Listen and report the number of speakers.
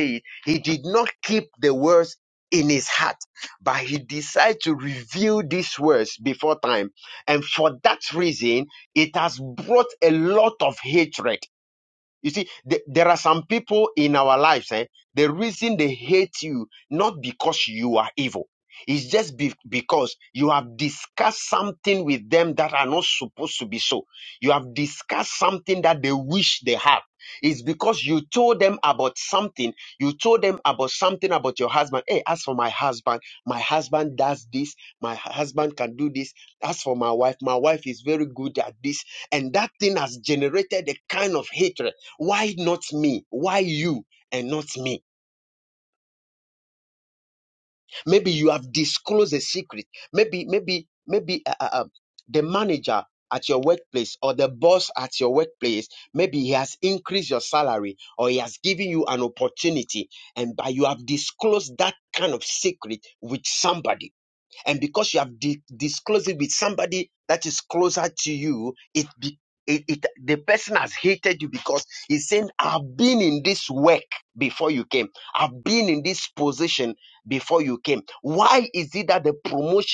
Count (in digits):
1